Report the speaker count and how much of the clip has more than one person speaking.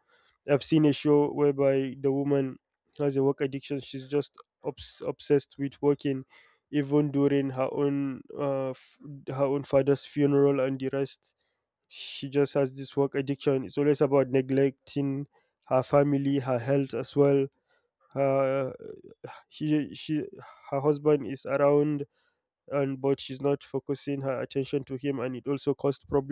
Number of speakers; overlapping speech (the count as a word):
one, no overlap